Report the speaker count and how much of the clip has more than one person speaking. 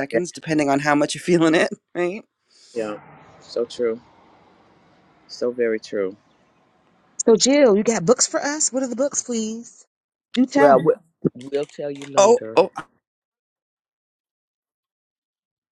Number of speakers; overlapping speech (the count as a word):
three, about 5%